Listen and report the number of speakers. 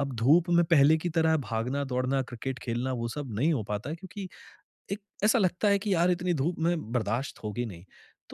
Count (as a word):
one